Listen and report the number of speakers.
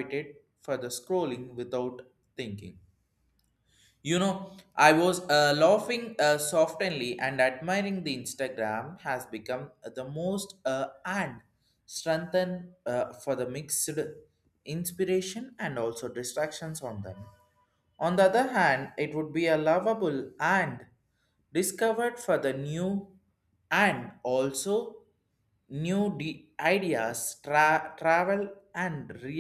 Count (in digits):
1